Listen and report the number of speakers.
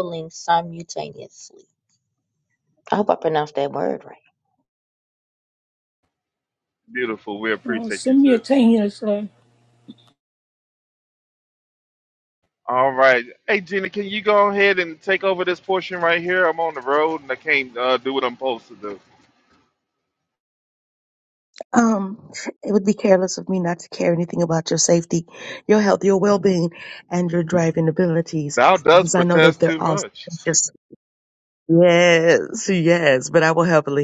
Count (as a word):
four